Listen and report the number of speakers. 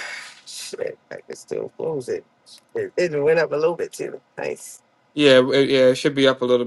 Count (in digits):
2